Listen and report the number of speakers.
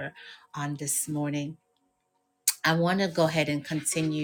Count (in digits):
1